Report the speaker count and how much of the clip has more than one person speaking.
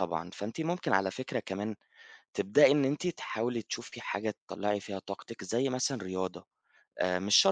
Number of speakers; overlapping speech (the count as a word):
one, no overlap